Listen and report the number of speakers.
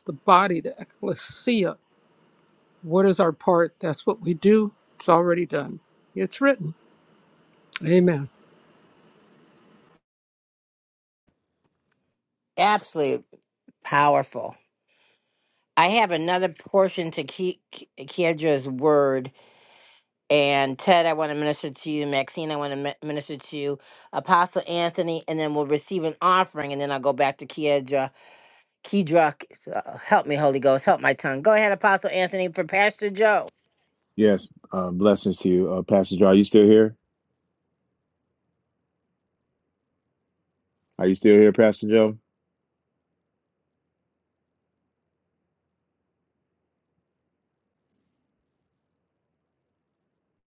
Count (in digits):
3